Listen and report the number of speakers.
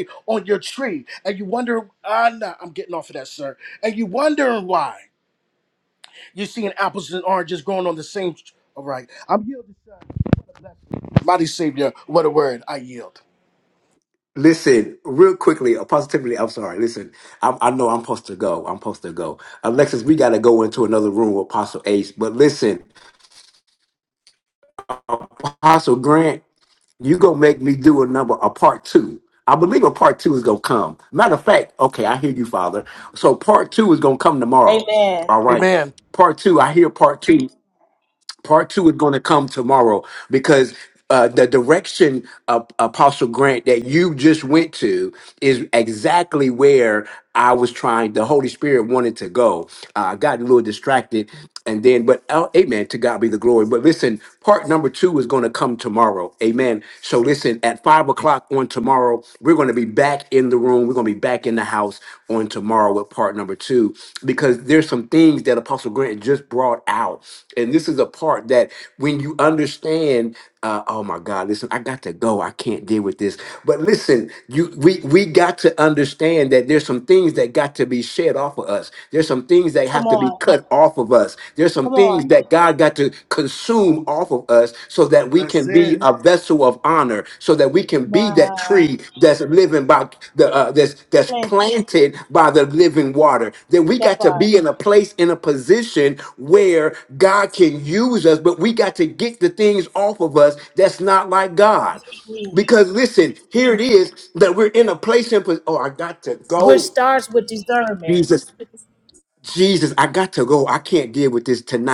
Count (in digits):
3